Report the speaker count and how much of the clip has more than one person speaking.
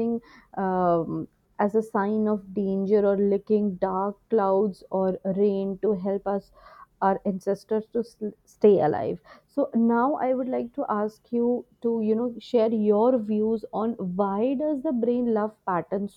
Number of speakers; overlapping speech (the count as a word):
one, no overlap